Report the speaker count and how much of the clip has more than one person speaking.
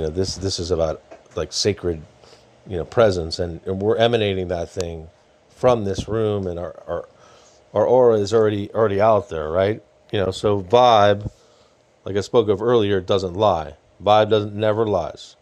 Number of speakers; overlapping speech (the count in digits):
1, no overlap